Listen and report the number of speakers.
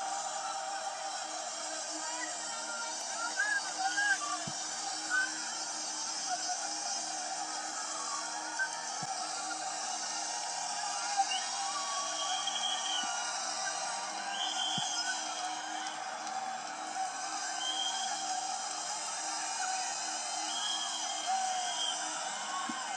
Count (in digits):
0